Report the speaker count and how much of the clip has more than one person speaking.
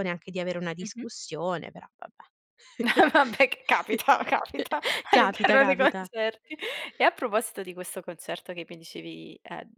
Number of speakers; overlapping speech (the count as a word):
two, about 12%